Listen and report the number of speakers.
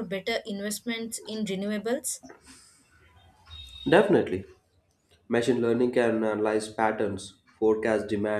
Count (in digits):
2